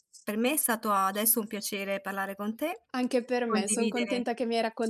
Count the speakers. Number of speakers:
2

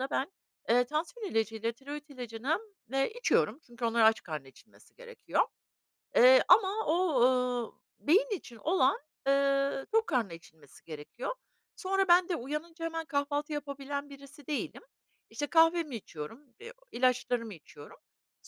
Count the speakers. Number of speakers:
1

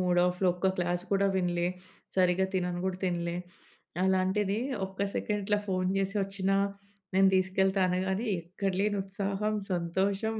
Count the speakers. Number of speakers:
1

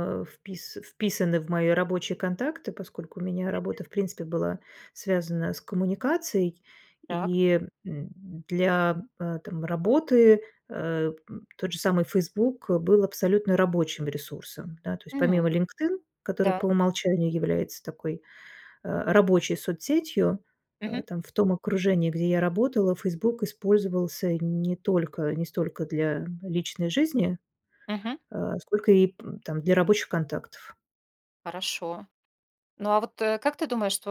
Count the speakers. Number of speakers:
2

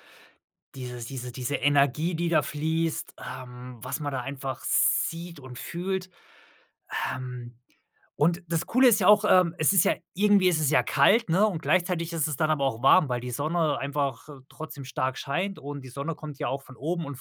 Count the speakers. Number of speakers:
1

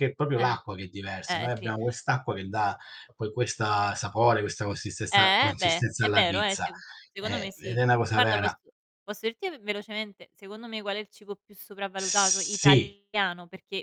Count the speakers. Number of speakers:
2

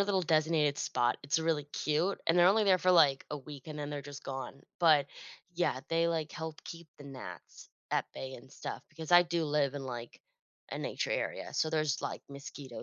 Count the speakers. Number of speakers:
1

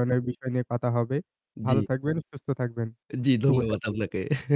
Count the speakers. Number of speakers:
2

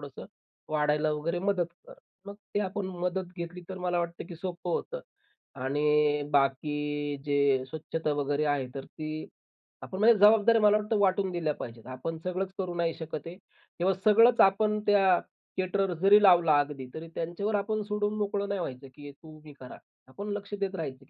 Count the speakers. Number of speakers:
1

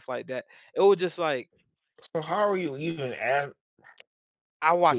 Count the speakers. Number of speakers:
2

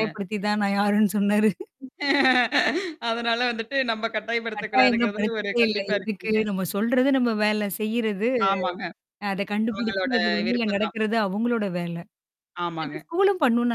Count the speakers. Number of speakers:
2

